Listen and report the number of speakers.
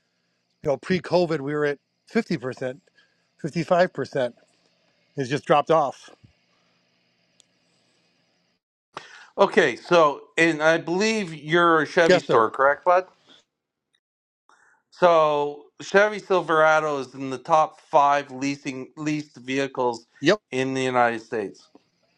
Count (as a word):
two